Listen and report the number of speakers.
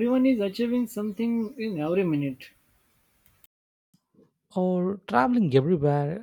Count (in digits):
2